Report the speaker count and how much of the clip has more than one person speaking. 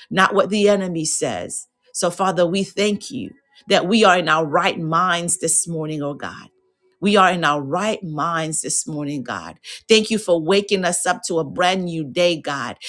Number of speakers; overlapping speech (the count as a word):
one, no overlap